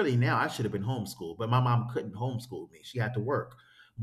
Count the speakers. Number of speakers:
one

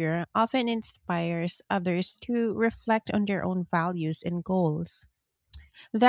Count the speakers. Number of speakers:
one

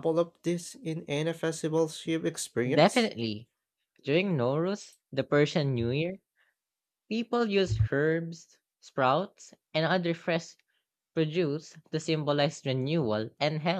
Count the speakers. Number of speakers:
two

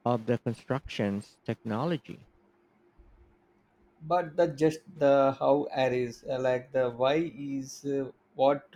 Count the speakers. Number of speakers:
two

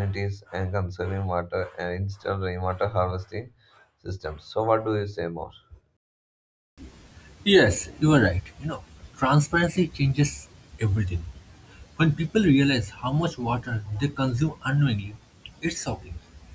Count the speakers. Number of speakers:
two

